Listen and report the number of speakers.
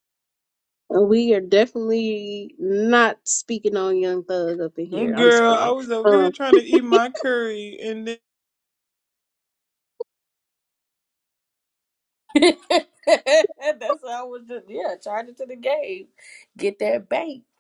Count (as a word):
three